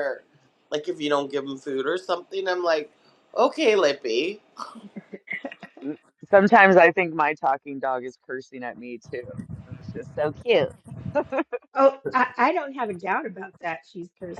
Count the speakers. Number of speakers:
three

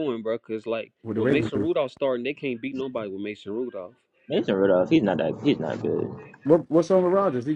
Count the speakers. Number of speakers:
three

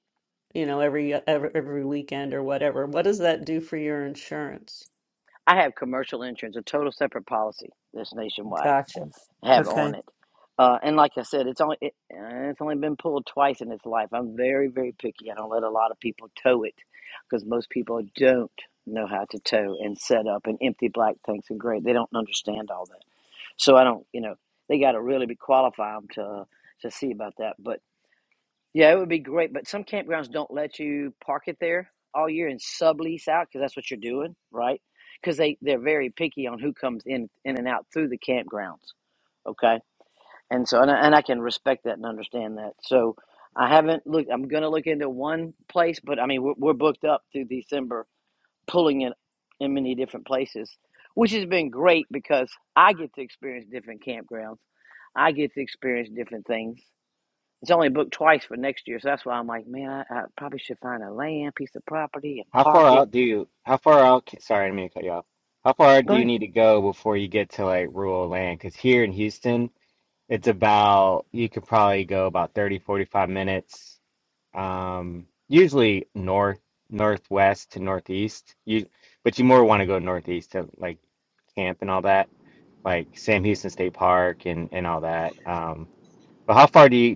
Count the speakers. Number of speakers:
three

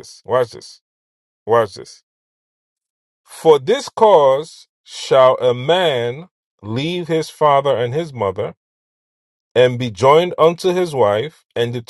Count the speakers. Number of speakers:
one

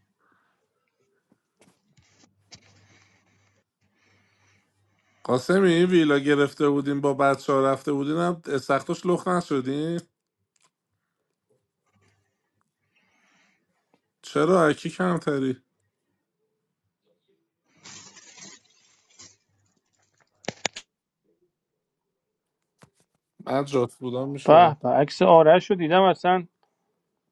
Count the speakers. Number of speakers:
two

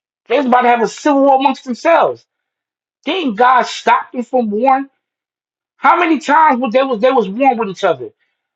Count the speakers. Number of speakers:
one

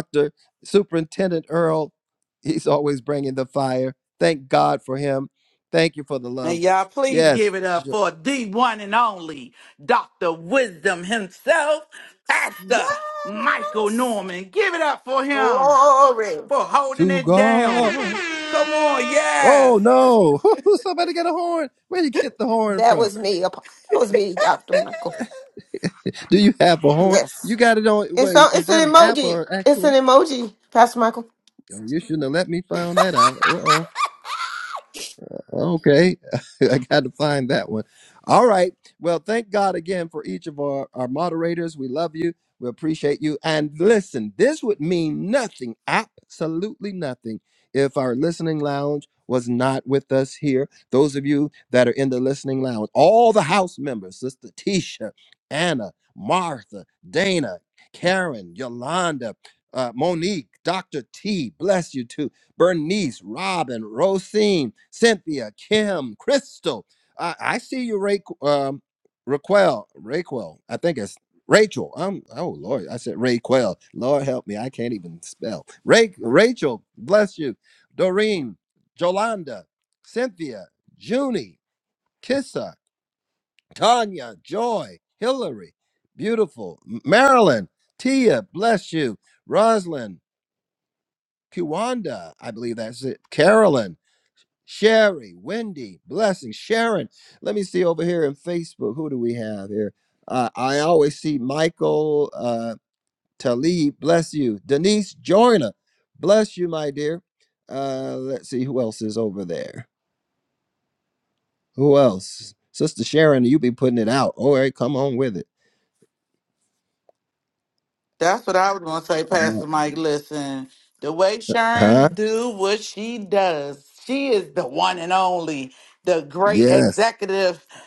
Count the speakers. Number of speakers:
three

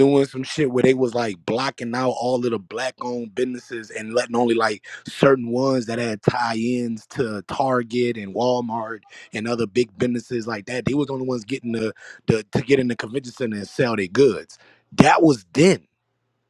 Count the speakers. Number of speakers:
one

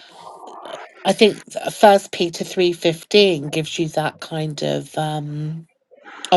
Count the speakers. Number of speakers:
one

